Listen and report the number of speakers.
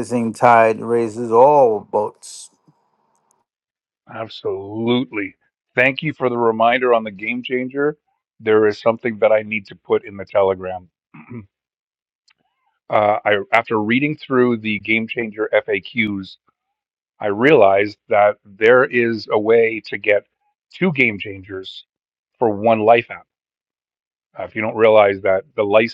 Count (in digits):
2